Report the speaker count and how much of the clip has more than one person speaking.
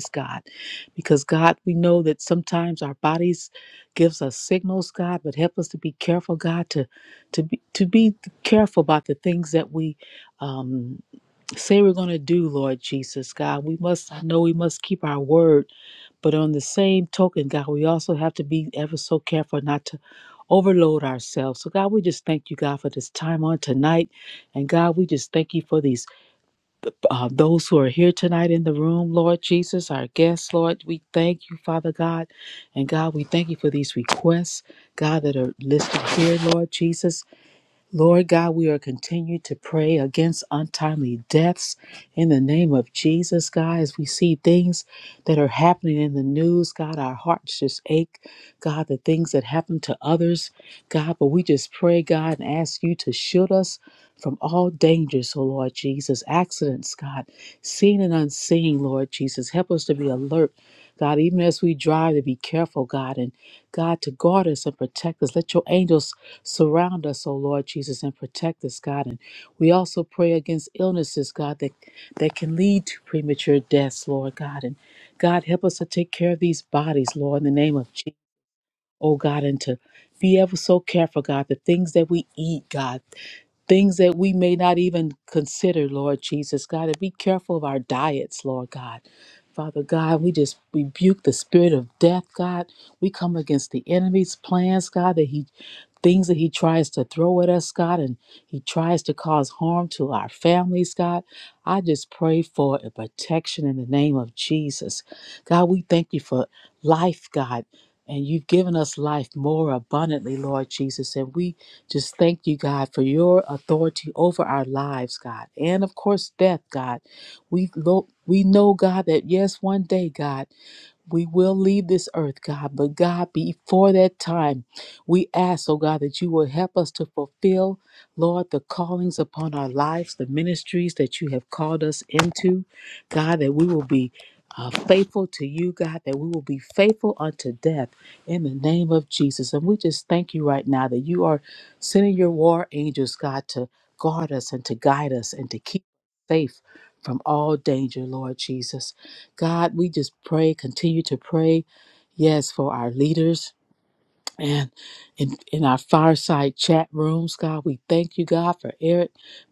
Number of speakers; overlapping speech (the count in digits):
1, no overlap